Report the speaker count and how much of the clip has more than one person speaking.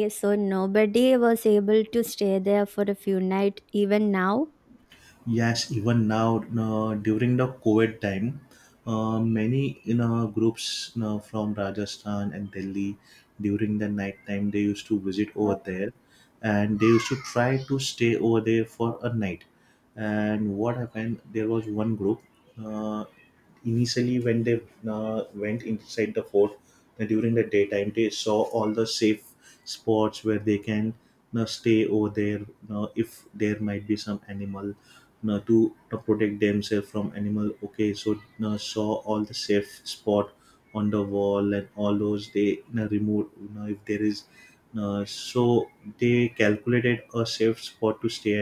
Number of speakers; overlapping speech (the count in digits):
2, no overlap